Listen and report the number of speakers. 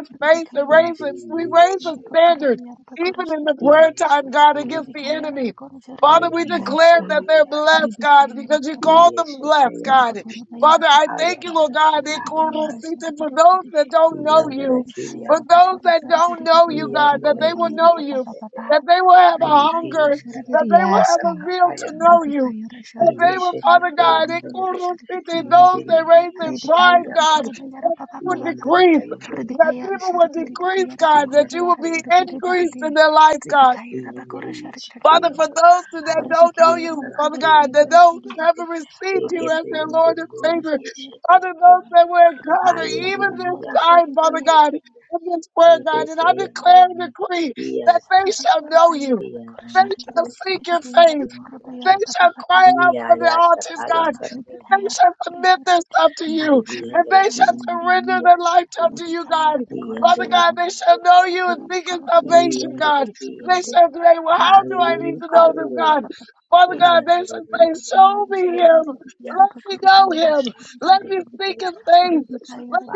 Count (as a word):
three